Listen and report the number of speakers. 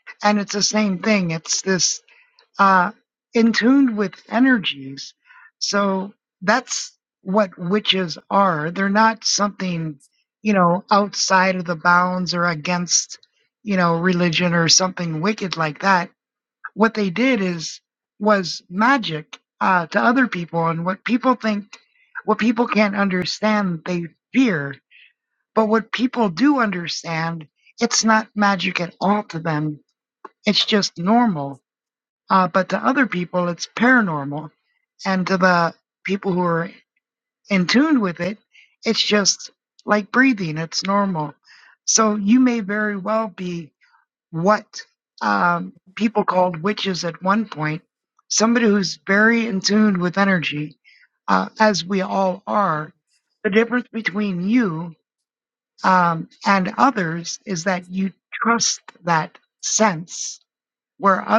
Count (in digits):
1